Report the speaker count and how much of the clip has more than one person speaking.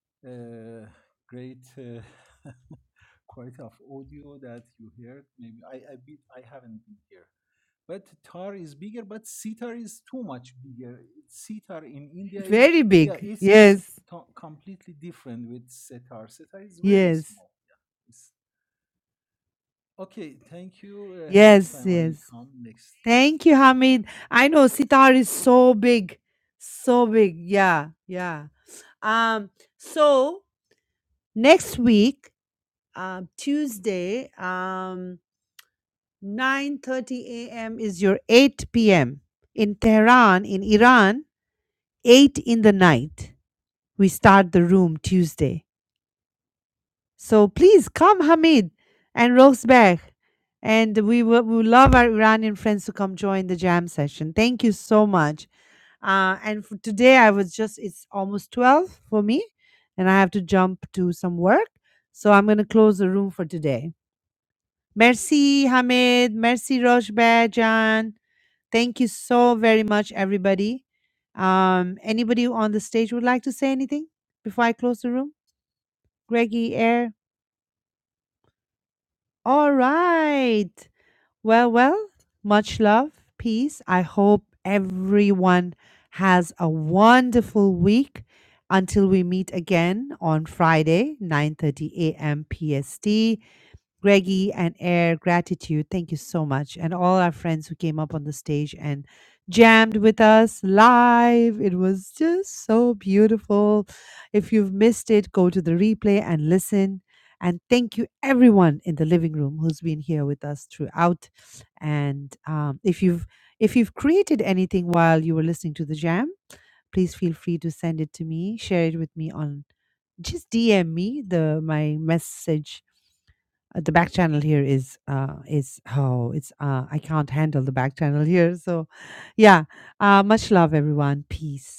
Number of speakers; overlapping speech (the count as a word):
two, about 2%